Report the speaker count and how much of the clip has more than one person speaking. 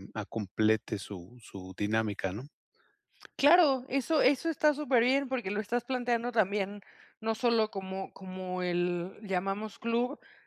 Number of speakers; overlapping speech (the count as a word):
two, no overlap